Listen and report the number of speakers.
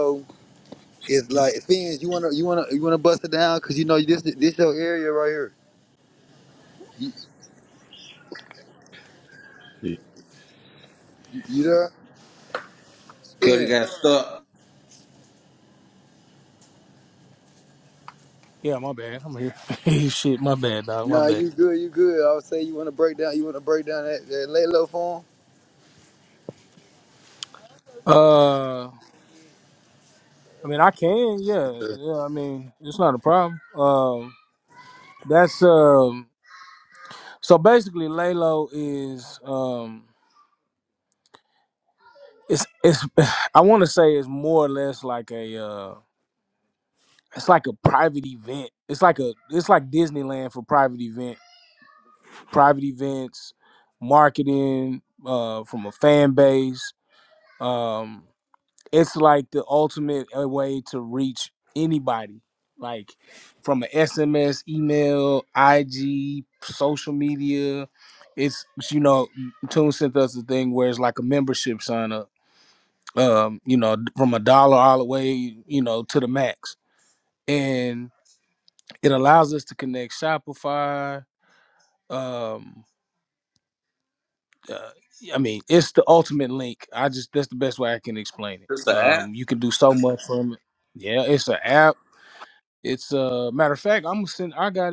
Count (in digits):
3